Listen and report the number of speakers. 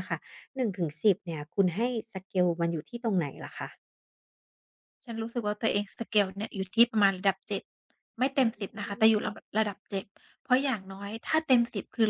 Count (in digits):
2